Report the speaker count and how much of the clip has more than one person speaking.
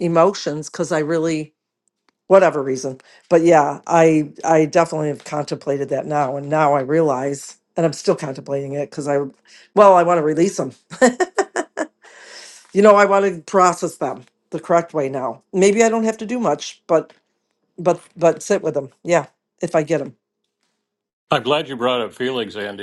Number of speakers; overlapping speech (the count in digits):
2, no overlap